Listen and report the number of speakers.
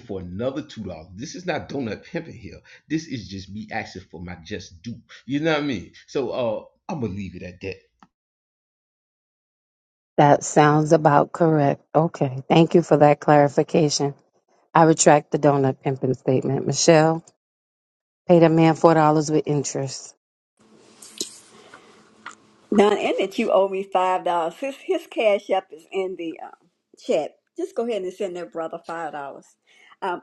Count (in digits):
3